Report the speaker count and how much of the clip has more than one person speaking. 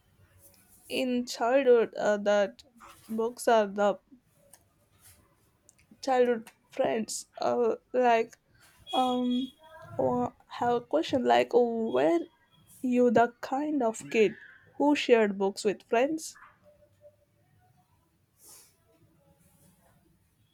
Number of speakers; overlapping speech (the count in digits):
1, no overlap